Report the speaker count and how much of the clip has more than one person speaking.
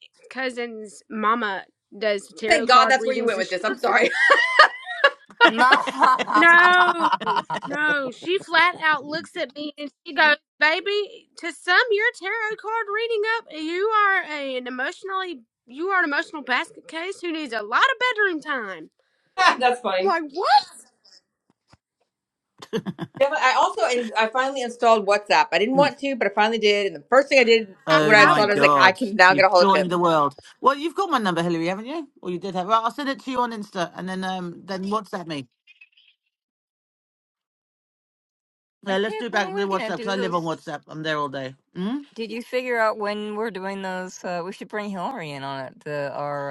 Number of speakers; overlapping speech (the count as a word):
four, about 9%